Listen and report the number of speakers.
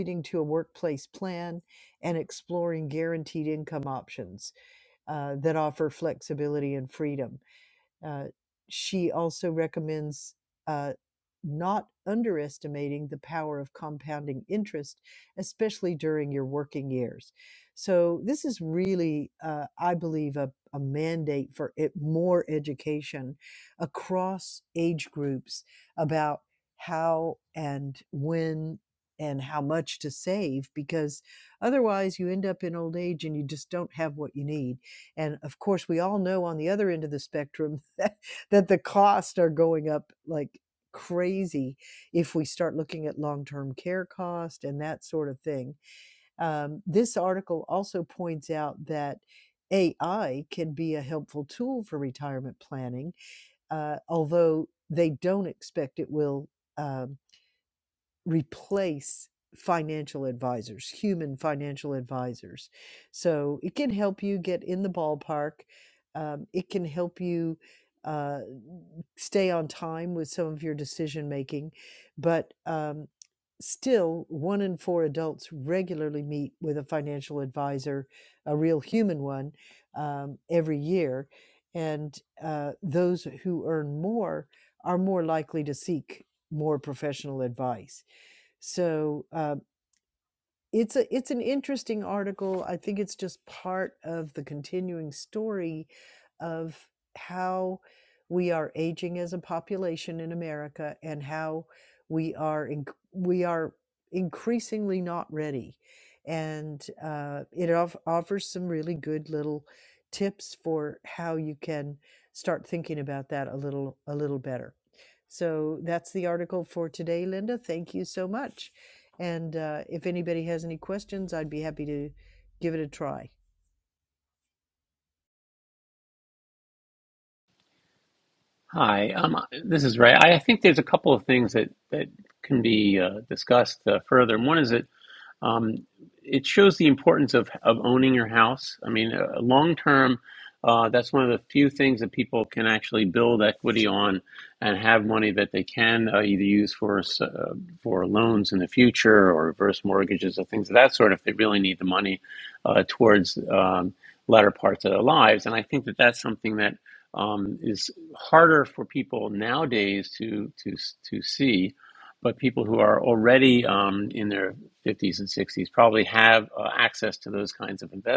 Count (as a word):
two